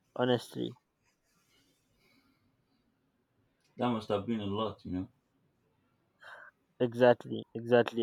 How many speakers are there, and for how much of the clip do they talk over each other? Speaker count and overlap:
2, no overlap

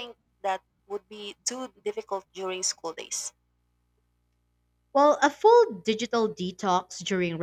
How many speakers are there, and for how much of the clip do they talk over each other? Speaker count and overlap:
2, no overlap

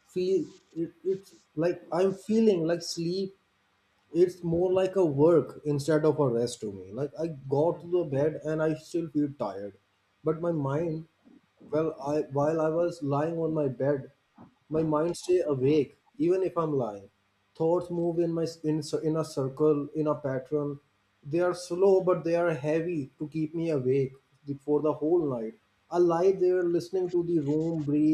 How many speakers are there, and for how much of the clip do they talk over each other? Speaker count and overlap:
1, no overlap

